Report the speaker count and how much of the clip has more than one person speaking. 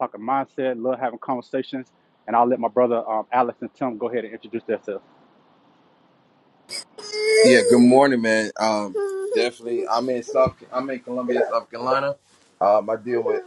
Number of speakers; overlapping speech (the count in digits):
2, no overlap